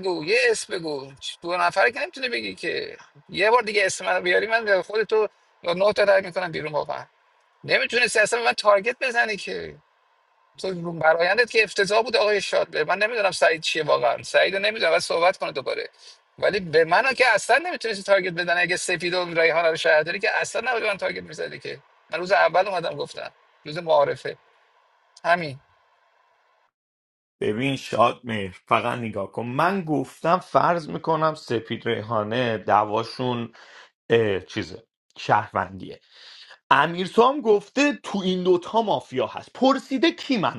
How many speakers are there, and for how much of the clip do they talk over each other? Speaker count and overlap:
two, no overlap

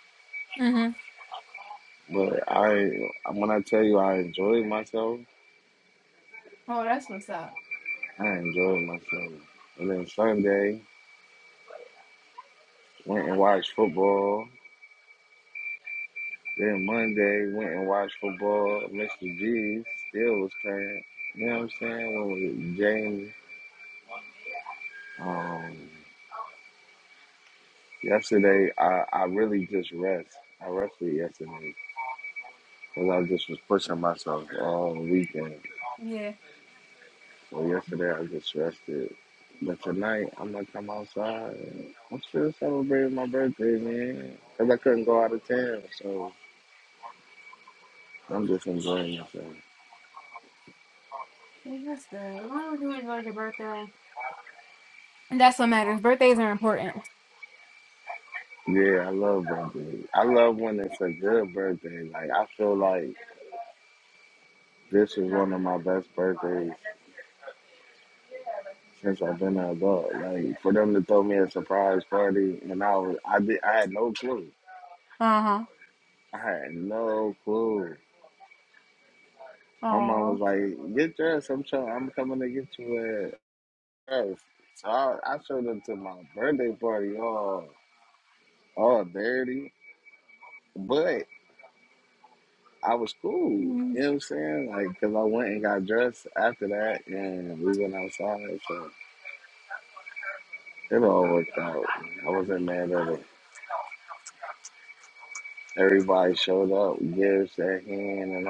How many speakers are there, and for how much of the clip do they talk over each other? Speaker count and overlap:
two, about 1%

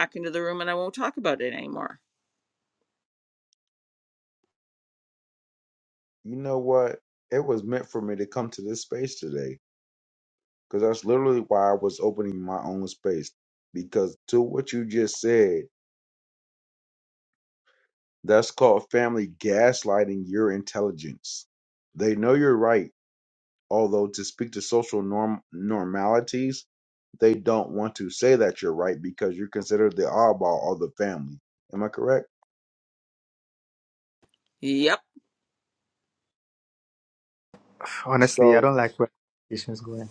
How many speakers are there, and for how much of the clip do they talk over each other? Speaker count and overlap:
three, about 1%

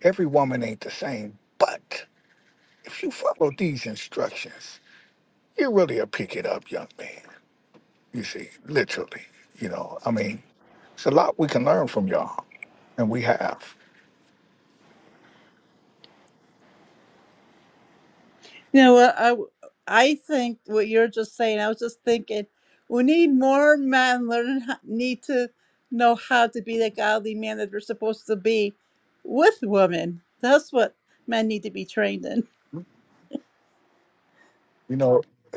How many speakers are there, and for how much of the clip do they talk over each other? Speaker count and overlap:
two, no overlap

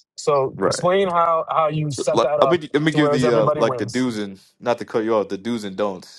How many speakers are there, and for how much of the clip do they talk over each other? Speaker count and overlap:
two, about 30%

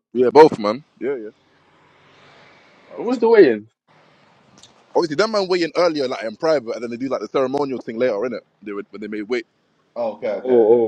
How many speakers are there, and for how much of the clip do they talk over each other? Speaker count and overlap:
three, about 7%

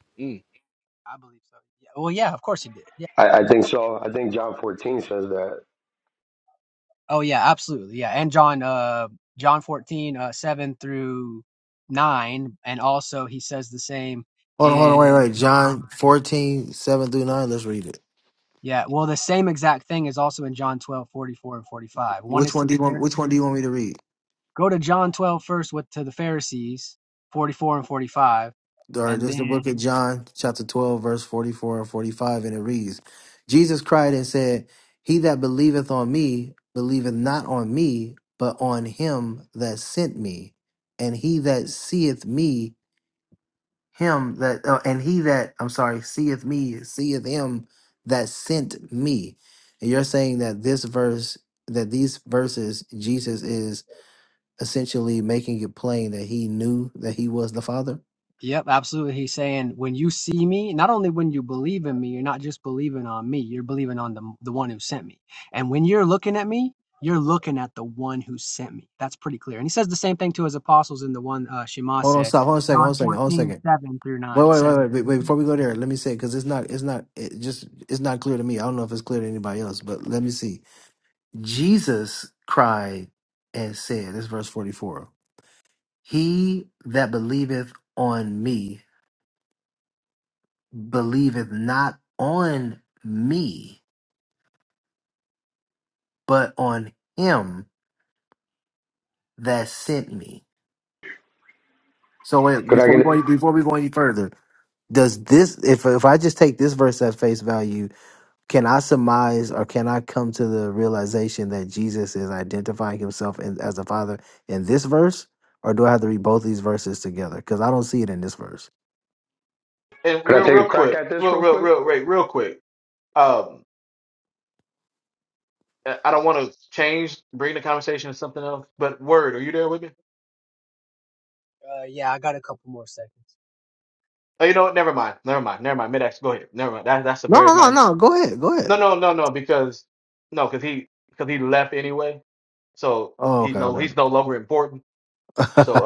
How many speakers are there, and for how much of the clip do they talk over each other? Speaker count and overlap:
four, about 5%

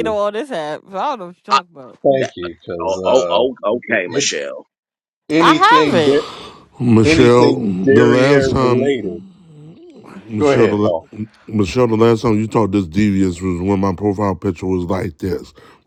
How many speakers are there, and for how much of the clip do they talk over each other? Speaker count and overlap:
four, about 29%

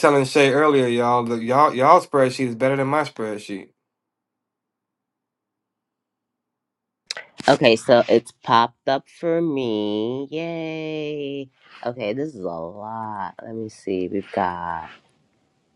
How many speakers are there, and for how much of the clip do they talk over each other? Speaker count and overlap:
two, no overlap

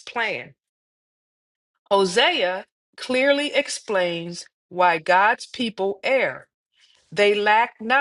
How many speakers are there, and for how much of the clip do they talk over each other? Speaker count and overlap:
one, no overlap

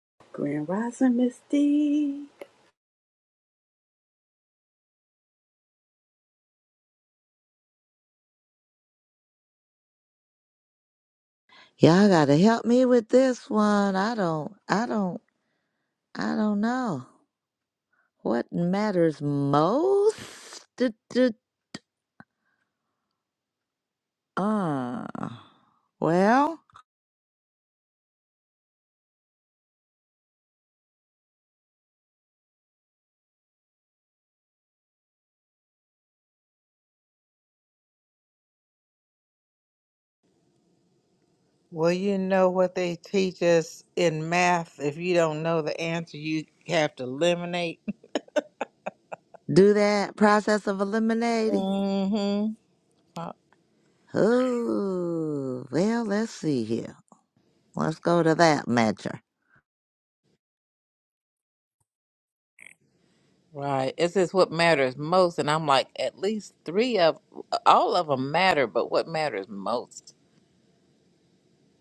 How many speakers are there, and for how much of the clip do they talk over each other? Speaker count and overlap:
three, under 1%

